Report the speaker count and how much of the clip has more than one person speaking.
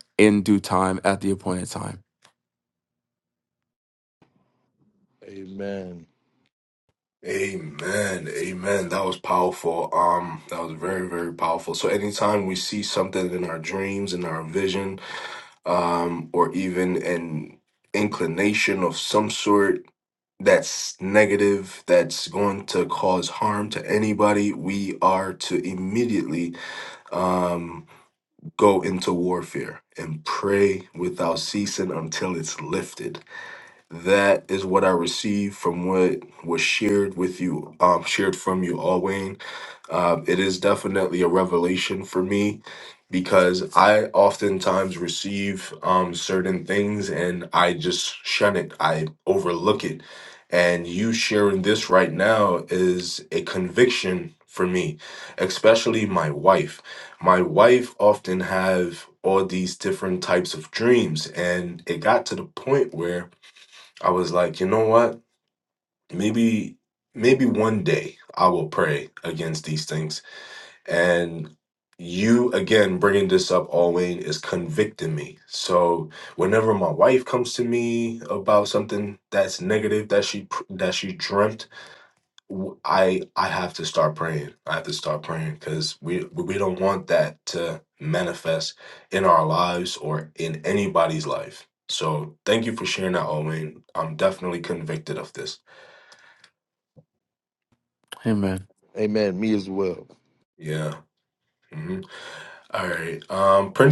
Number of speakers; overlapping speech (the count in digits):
3, no overlap